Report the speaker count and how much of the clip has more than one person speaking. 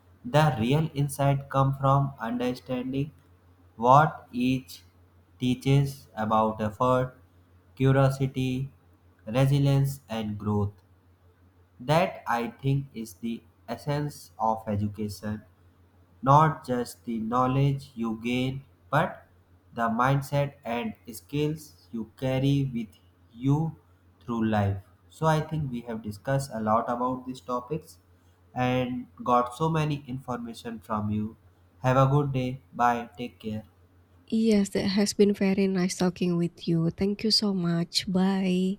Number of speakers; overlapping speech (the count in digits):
2, no overlap